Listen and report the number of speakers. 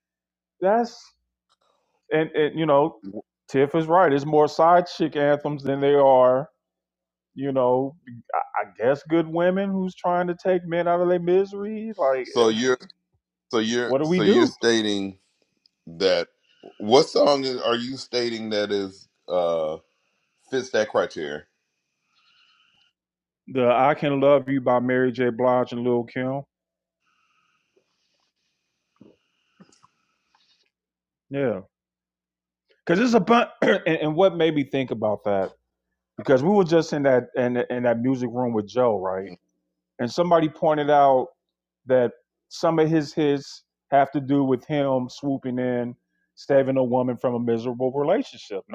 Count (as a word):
two